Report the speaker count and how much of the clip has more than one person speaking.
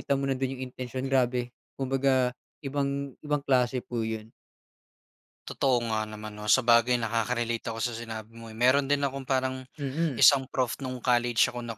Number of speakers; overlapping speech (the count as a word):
two, about 1%